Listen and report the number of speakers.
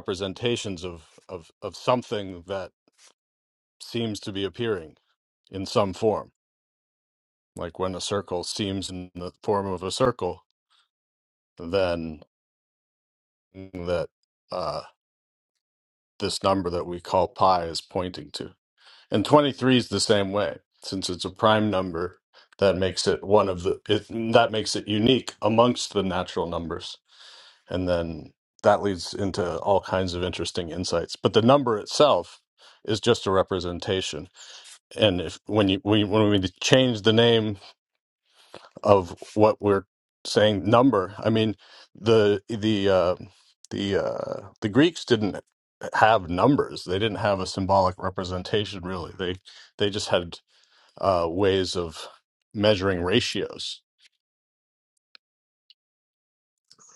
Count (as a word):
one